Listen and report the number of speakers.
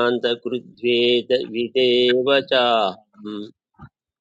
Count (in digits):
1